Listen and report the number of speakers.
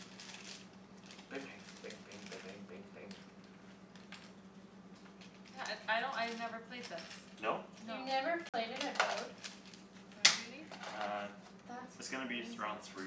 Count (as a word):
four